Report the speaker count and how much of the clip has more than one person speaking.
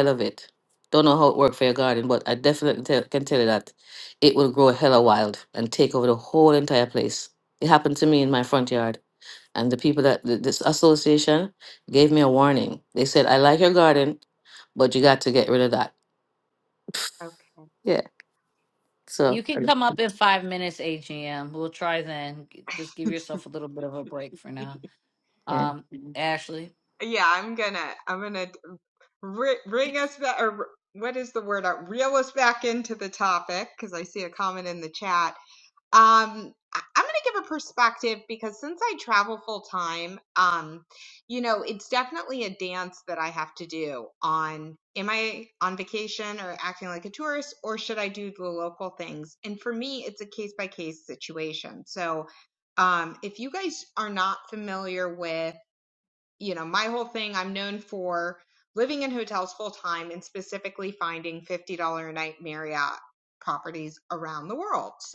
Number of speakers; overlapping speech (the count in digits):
3, about 1%